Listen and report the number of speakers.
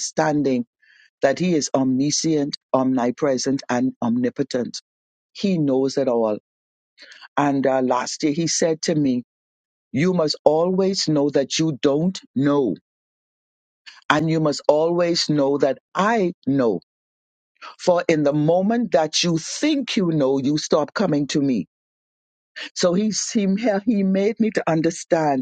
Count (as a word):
one